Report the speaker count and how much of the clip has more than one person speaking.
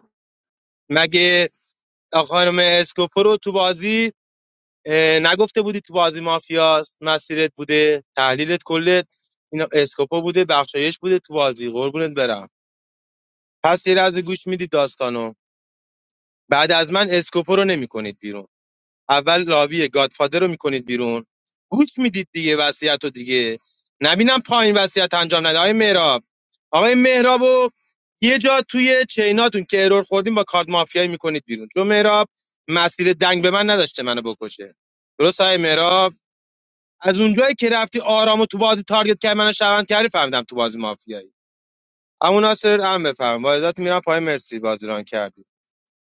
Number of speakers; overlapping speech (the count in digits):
1, no overlap